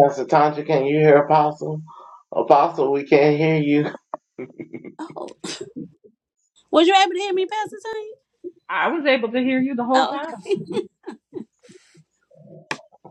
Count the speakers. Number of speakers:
three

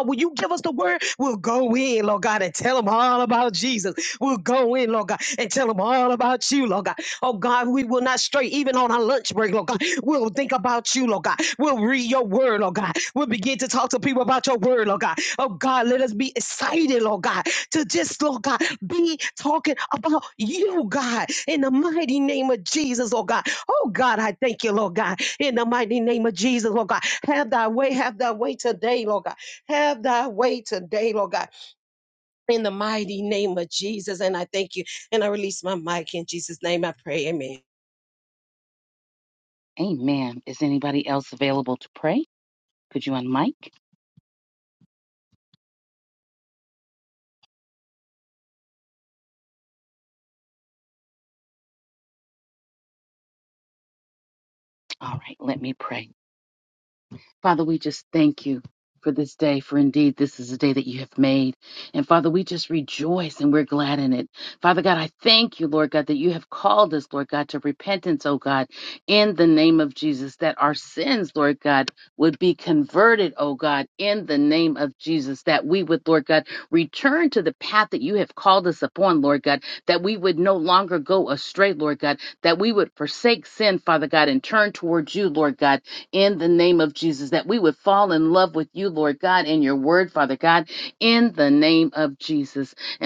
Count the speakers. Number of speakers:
two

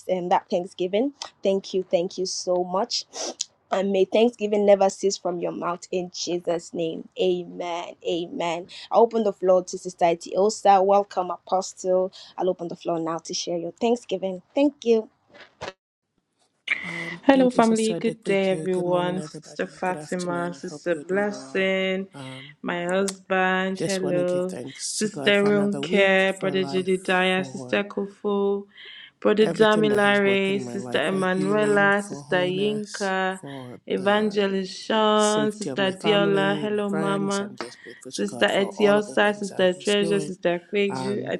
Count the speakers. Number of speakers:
three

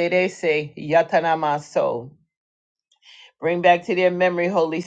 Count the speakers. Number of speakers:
one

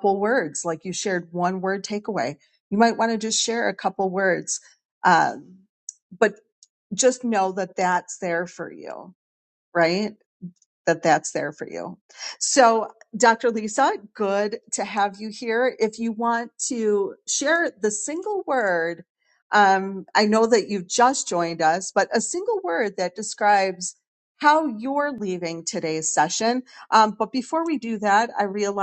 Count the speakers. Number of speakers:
one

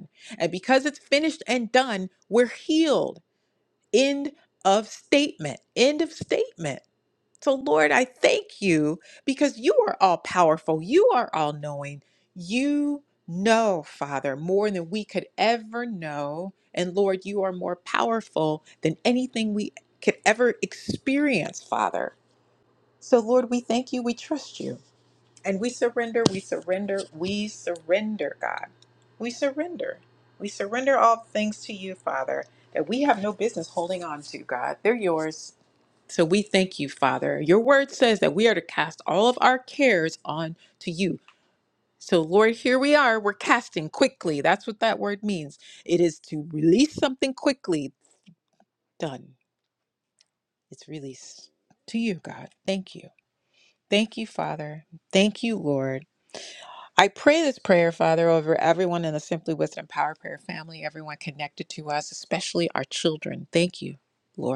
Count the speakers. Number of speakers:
one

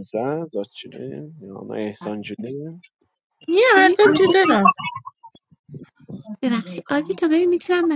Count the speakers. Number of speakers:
three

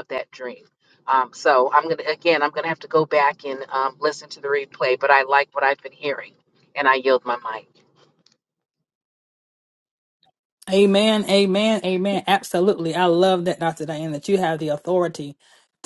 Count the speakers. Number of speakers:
two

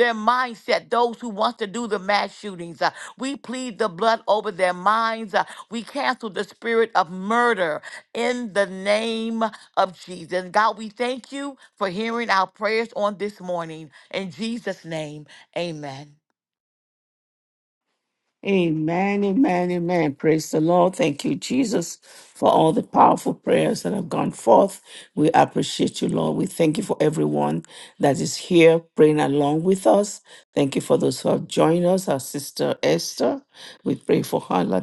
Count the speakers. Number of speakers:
two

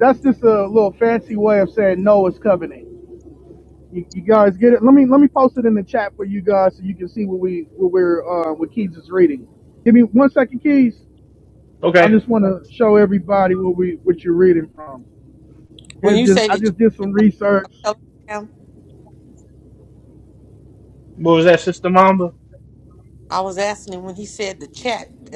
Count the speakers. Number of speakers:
three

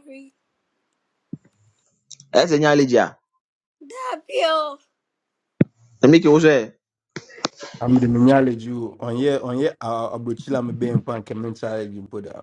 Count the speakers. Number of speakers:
three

